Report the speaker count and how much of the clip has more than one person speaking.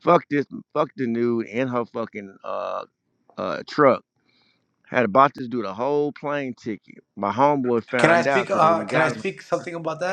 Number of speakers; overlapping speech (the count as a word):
two, about 13%